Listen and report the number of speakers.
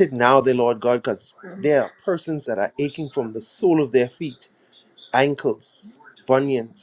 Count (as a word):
one